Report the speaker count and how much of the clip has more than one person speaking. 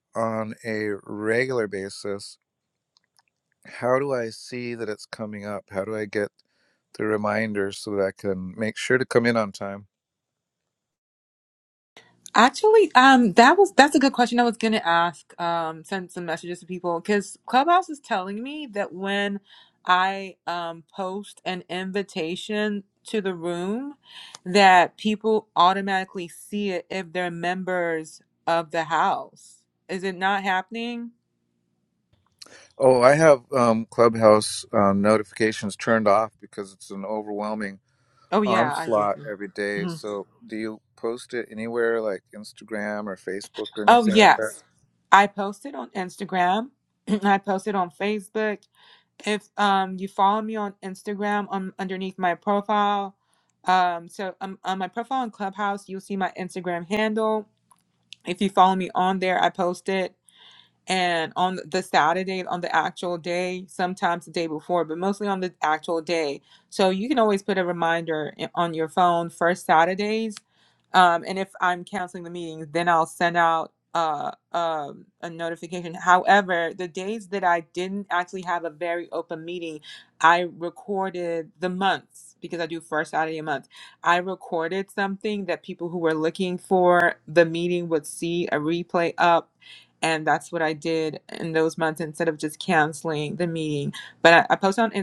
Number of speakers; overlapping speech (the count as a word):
two, about 2%